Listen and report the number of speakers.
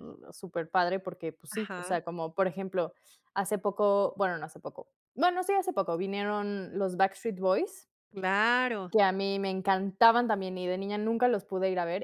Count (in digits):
2